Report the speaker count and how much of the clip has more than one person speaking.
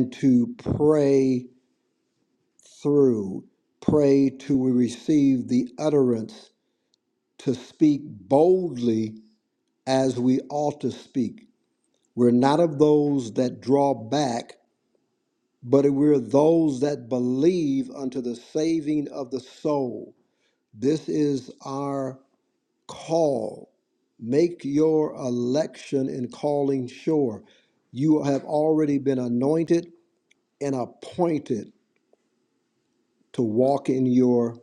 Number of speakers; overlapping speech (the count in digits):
1, no overlap